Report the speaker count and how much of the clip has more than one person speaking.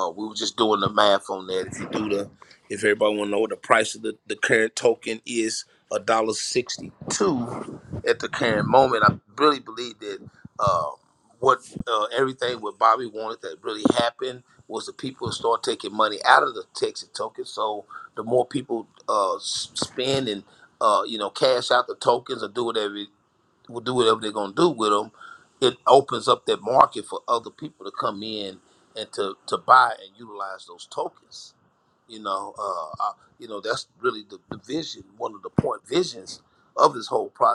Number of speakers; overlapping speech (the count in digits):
1, no overlap